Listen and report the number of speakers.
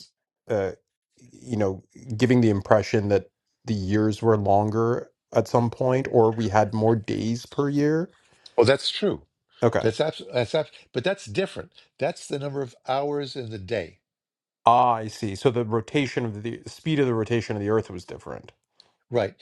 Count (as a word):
two